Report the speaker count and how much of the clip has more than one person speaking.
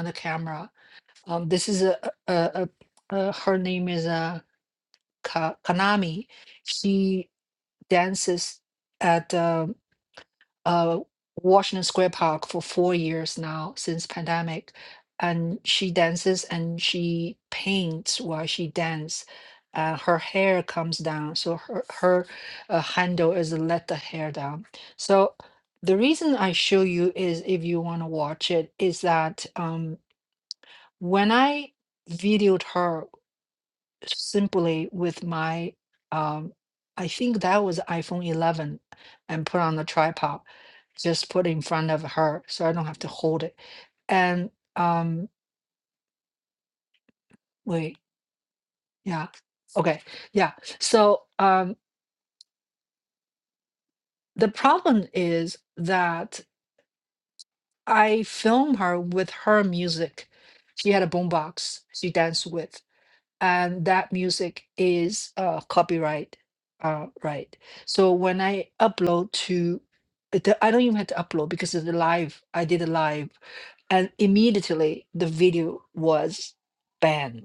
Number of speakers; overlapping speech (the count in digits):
1, no overlap